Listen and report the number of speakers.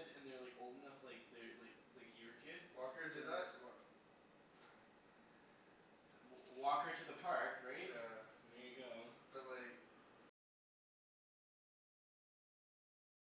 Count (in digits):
2